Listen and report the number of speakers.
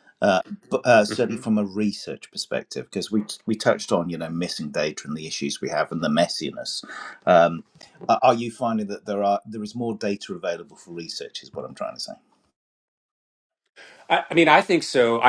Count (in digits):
2